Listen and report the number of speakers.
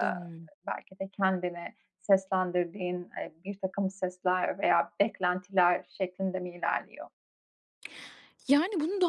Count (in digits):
2